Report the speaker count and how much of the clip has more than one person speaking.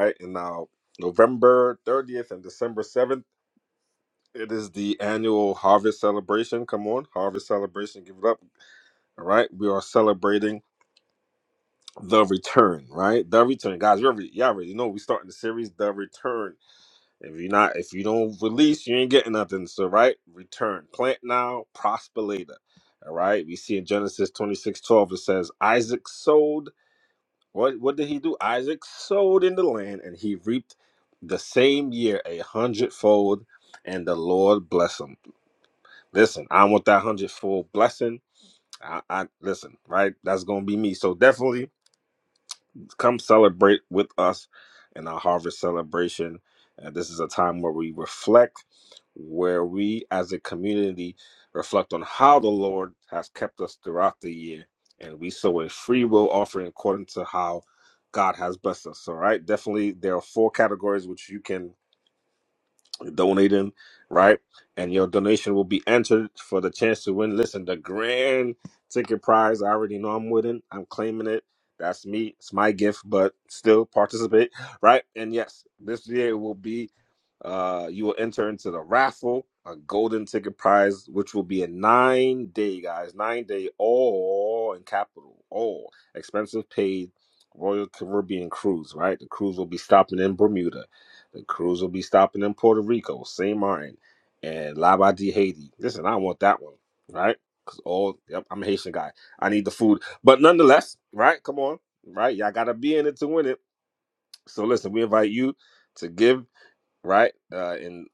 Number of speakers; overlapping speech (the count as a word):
one, no overlap